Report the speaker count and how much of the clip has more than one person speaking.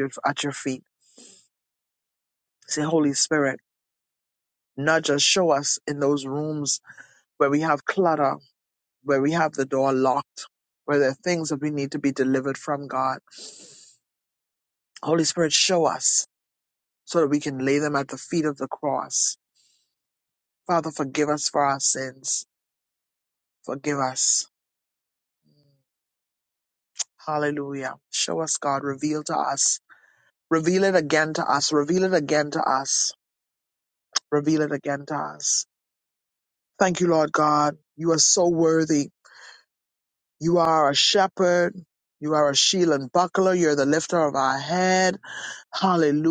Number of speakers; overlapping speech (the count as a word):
one, no overlap